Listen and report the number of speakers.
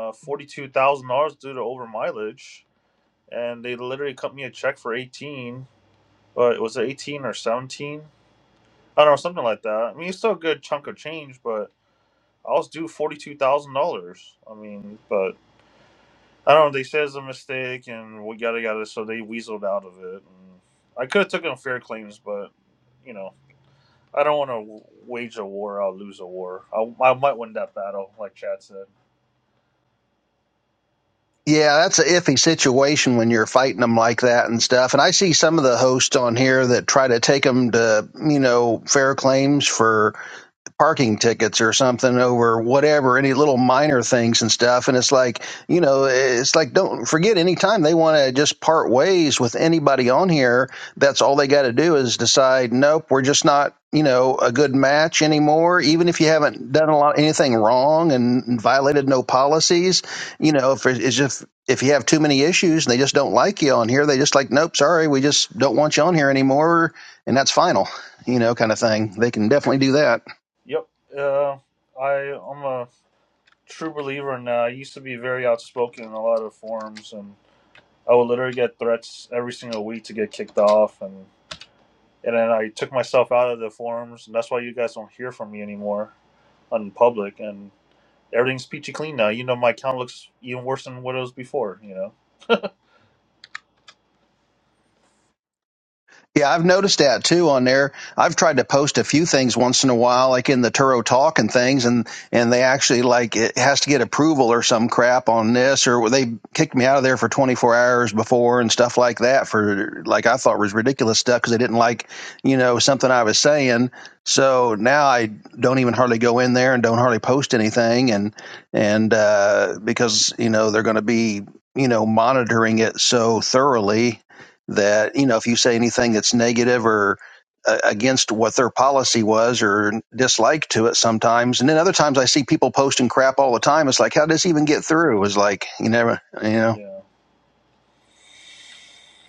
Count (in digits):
2